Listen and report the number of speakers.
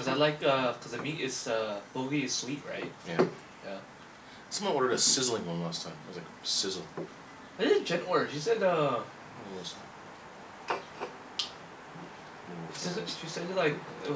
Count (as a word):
two